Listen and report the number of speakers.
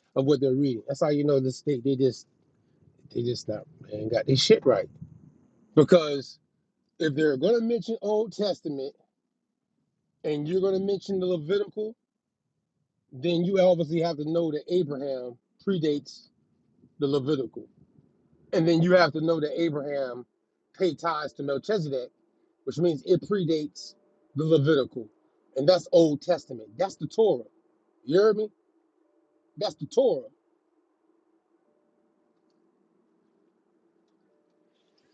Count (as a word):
one